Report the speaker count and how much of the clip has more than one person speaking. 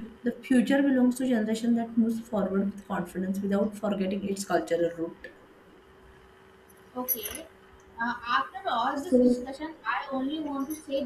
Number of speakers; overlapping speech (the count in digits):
2, about 3%